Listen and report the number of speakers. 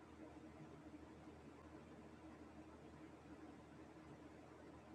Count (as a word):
zero